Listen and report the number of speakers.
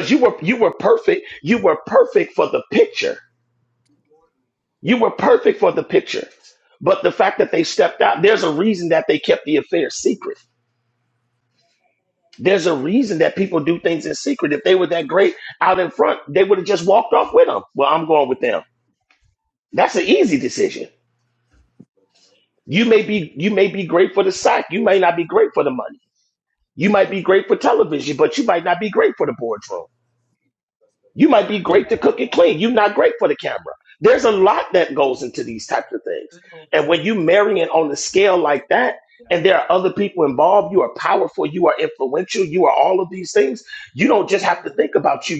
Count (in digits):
1